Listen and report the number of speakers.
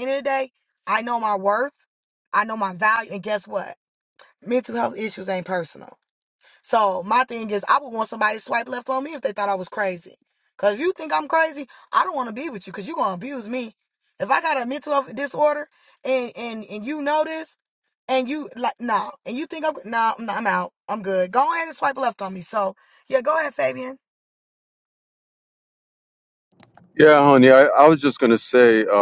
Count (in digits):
2